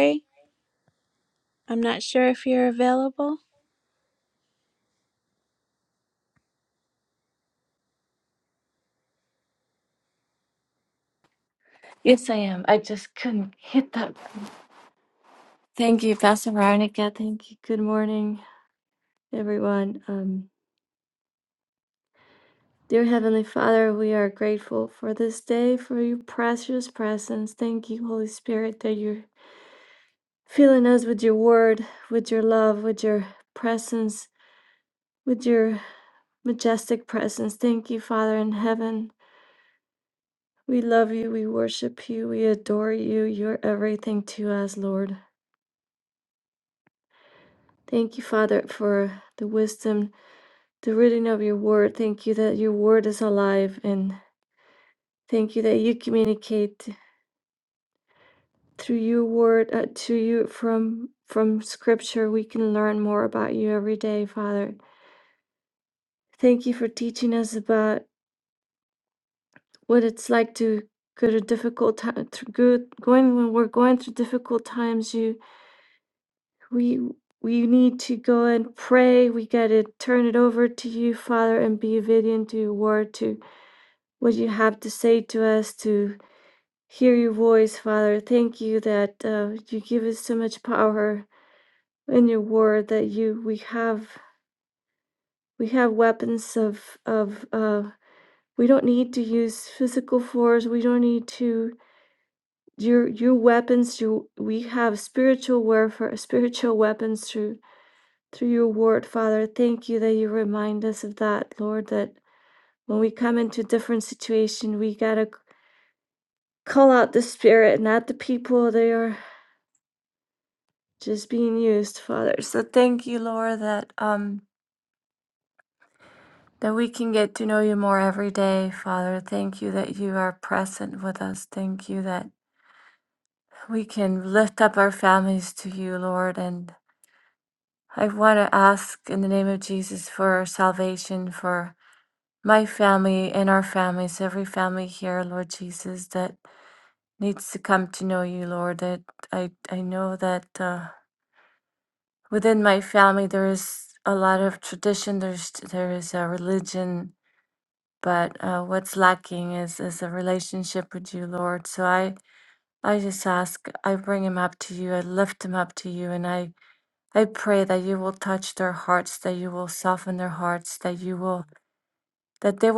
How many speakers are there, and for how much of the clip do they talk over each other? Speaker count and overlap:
2, no overlap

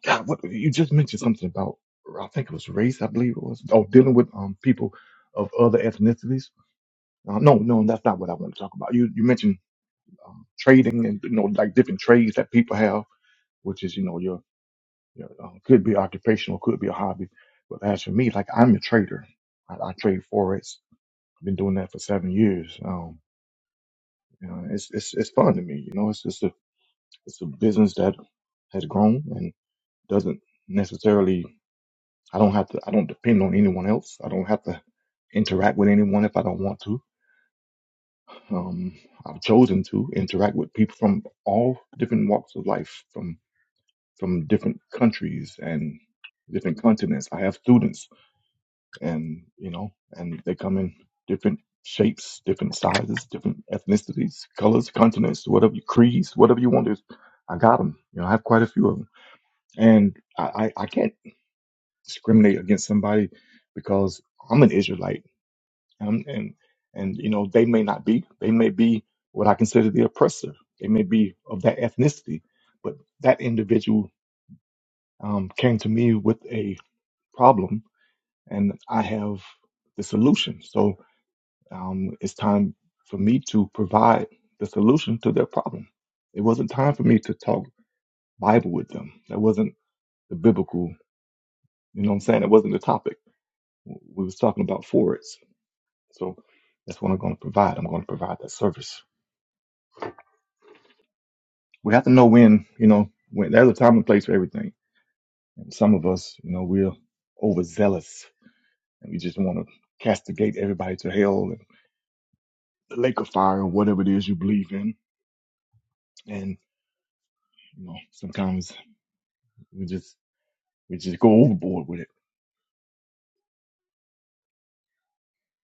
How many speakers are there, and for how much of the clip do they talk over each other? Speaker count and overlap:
1, no overlap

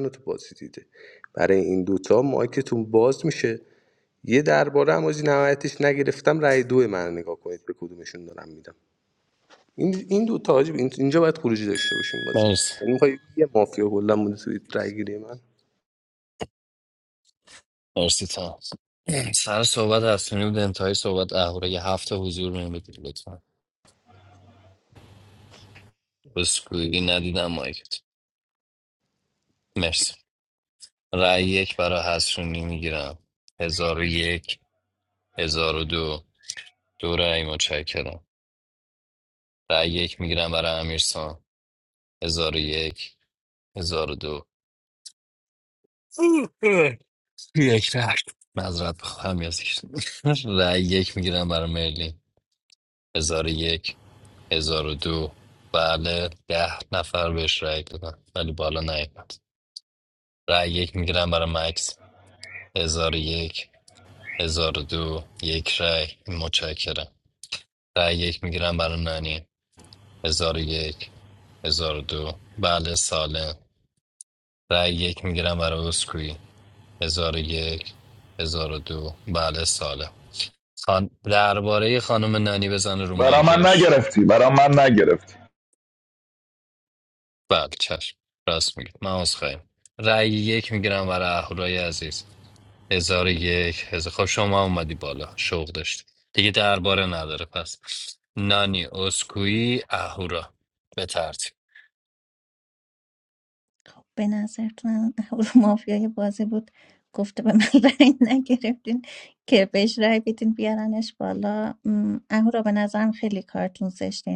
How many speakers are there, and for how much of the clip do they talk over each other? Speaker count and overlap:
4, about 1%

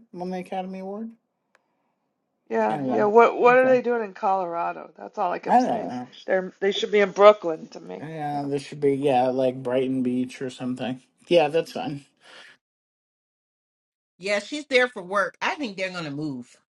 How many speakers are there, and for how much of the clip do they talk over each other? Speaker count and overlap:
3, about 7%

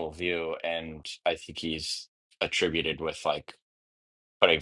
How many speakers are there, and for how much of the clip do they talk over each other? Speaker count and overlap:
1, no overlap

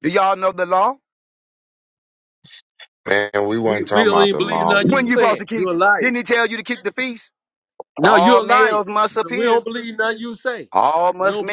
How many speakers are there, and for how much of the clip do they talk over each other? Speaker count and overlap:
3, about 31%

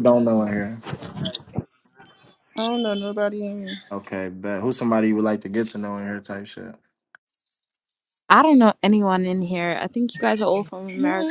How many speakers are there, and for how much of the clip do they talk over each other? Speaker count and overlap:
3, about 4%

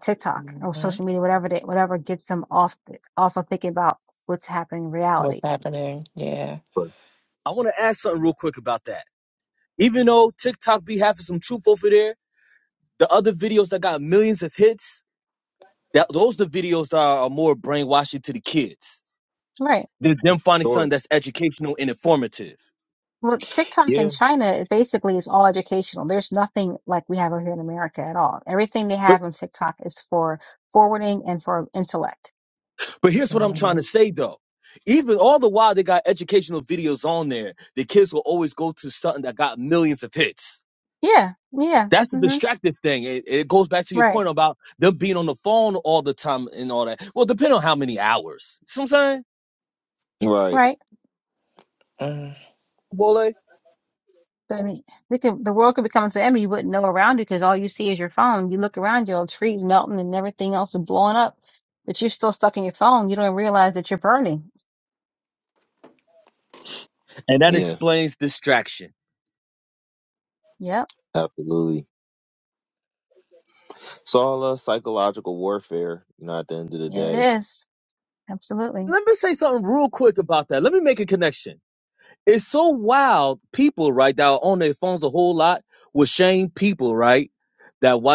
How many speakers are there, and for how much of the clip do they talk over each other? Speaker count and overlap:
4, about 3%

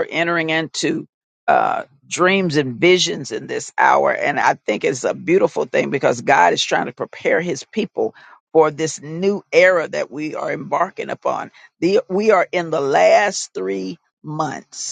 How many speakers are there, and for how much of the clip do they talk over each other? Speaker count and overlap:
1, no overlap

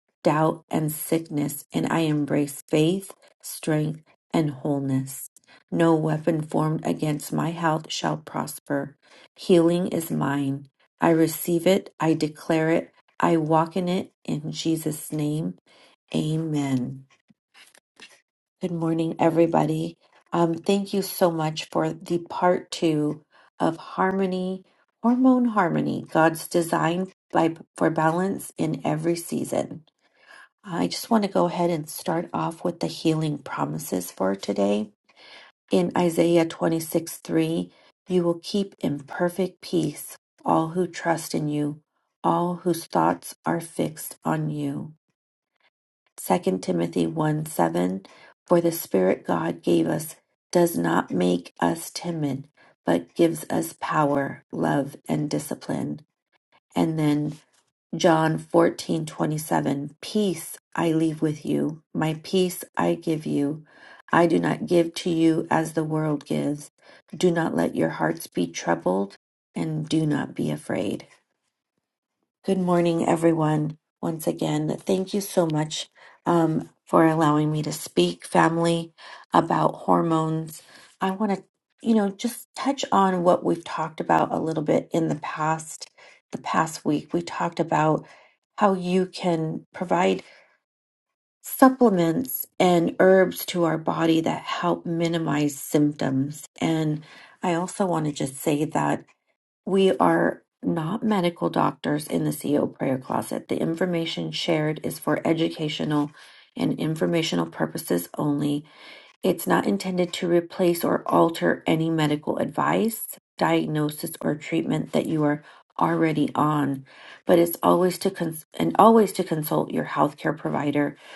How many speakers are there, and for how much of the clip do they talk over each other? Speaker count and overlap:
1, no overlap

